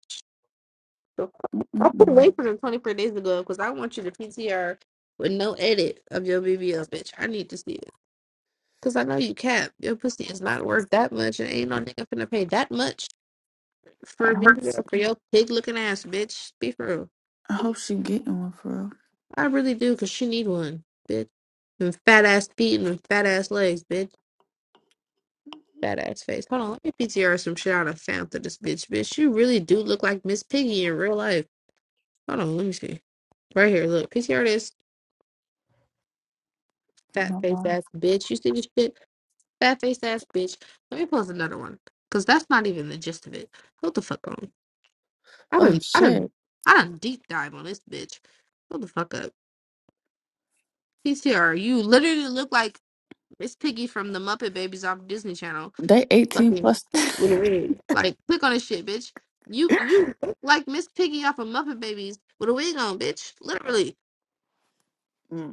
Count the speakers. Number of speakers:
2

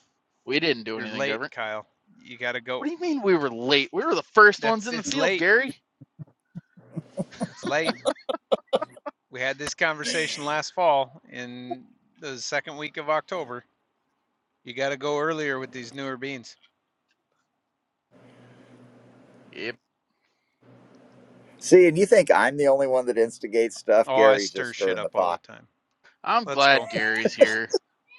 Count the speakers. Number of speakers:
3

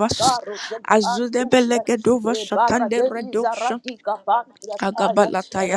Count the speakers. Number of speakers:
2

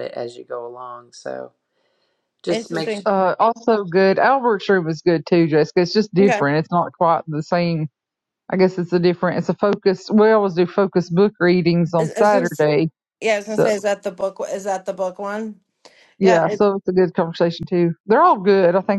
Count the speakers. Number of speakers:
3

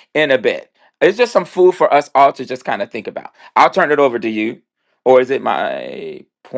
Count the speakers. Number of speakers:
1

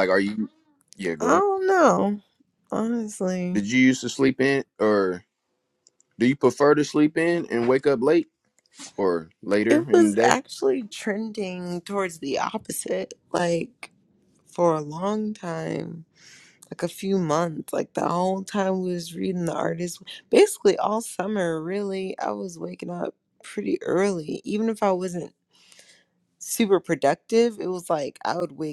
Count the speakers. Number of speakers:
2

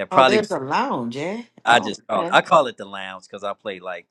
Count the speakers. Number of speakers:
2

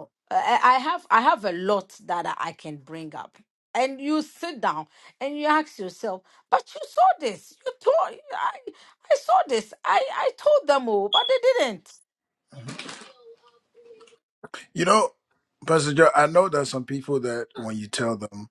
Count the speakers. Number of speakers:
2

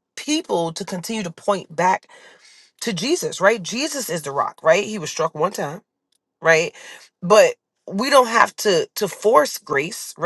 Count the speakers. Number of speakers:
1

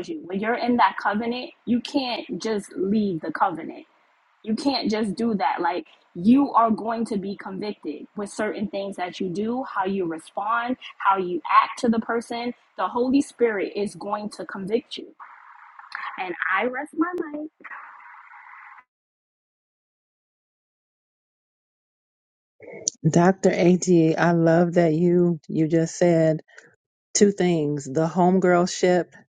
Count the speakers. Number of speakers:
2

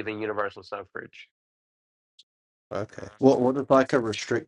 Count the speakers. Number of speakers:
2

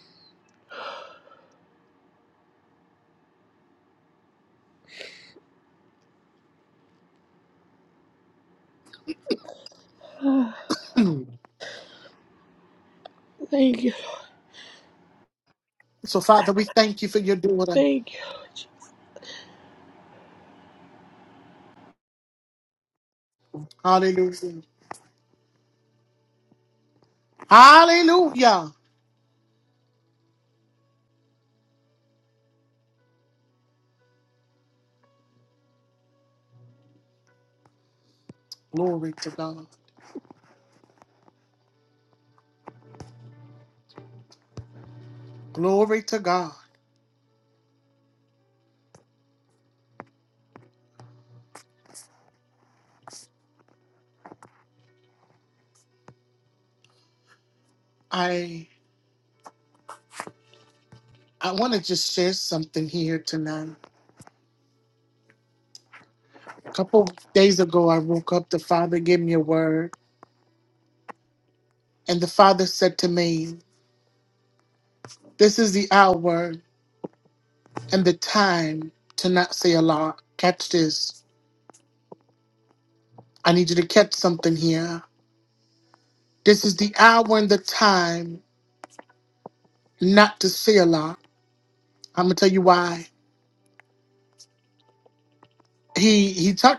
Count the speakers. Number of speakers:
2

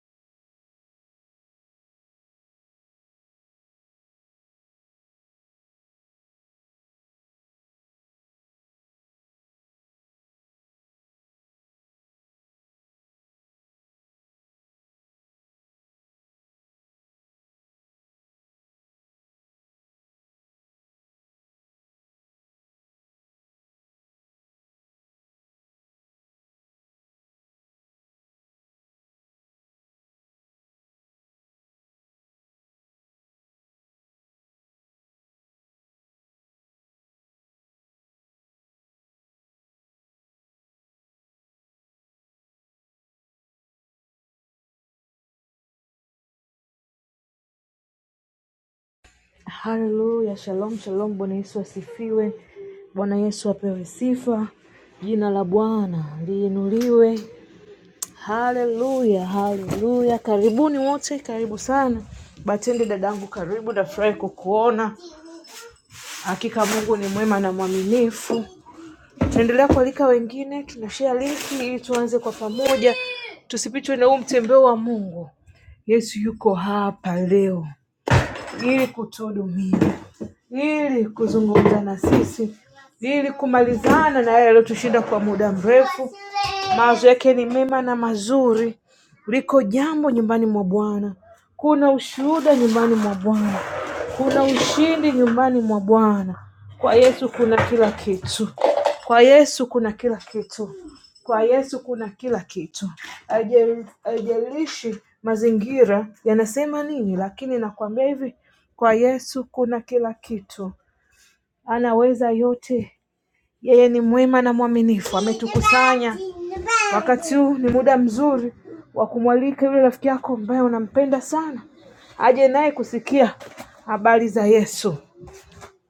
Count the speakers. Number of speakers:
1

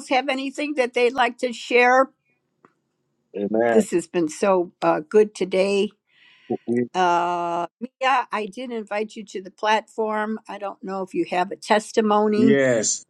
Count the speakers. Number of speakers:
2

